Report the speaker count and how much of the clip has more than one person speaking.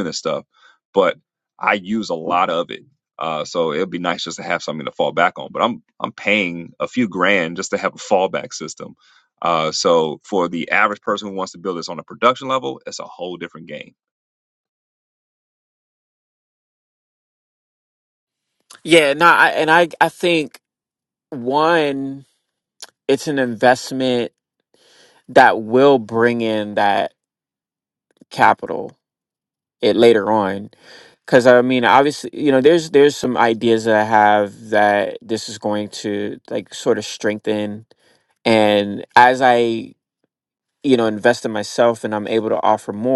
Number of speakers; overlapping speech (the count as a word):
two, no overlap